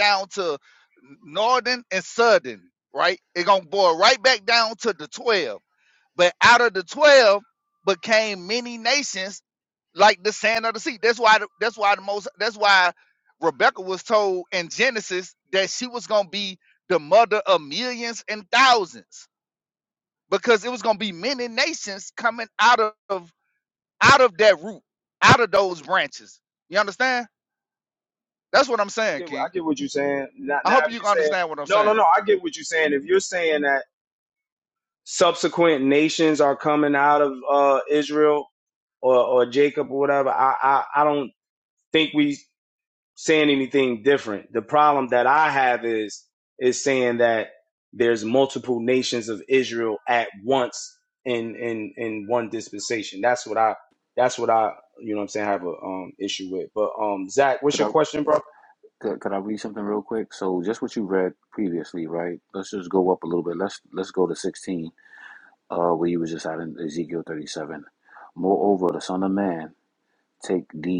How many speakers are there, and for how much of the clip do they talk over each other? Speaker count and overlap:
three, about 2%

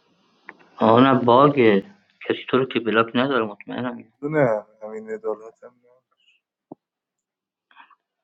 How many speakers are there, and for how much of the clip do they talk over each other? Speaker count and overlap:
two, no overlap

